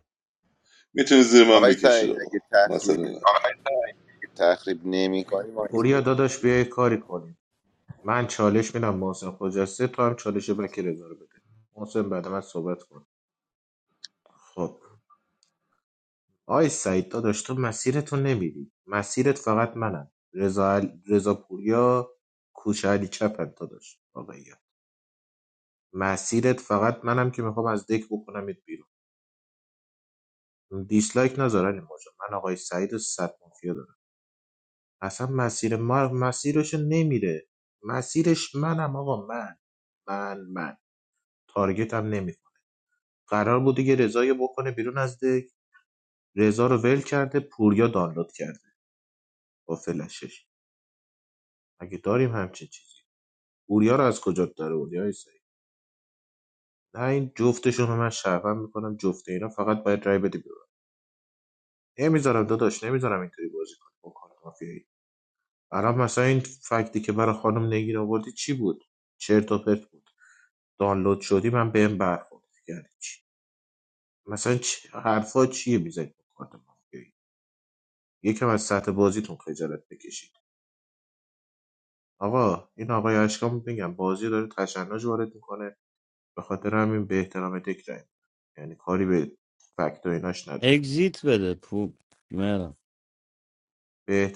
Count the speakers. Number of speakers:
4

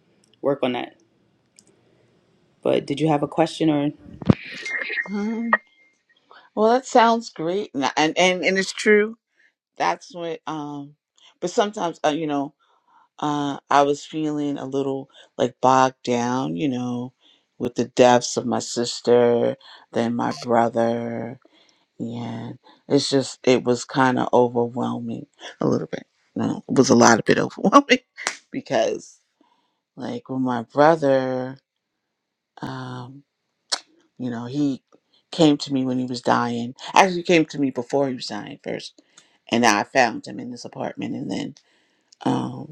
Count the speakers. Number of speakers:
2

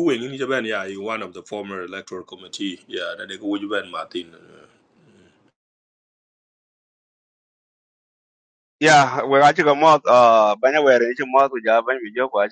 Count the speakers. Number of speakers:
2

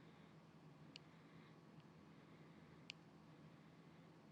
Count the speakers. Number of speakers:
0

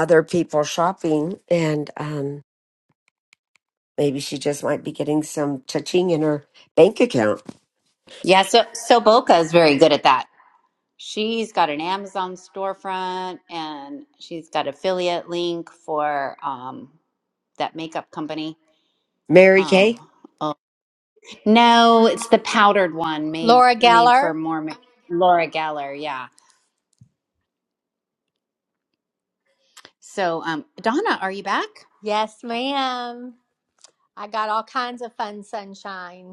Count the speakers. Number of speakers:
3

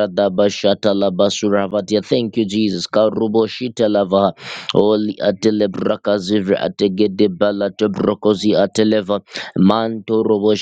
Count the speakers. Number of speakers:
1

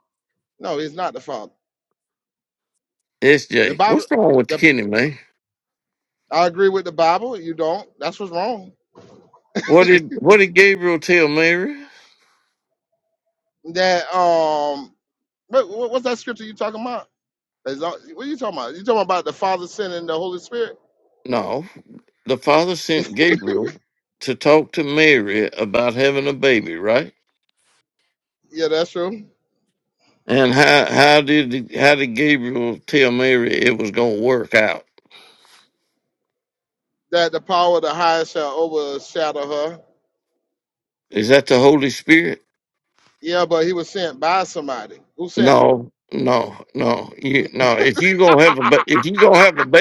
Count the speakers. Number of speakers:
2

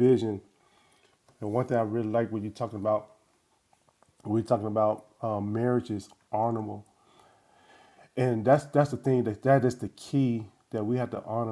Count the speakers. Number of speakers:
1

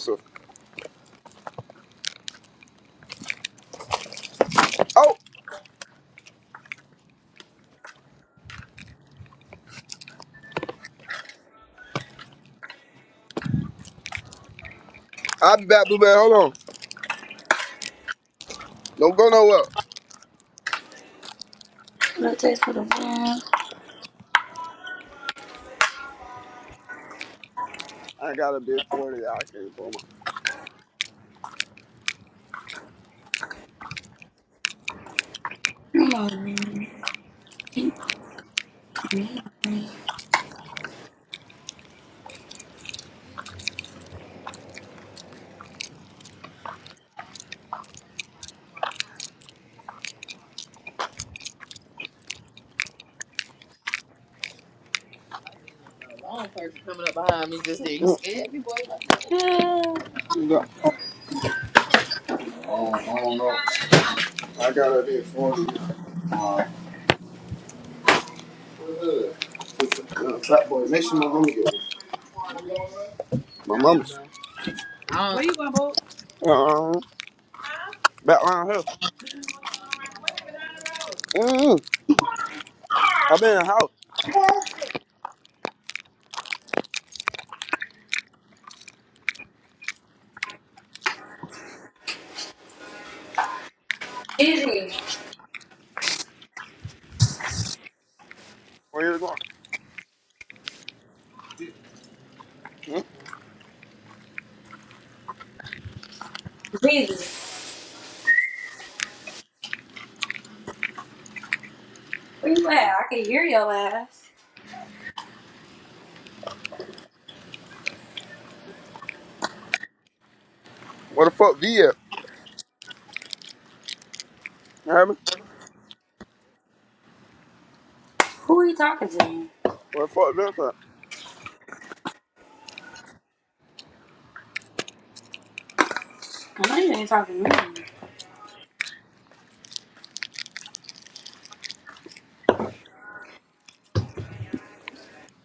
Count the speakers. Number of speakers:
2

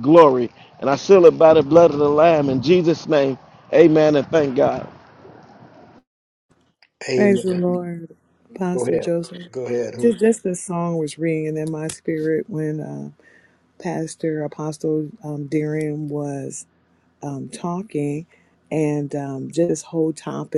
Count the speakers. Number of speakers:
3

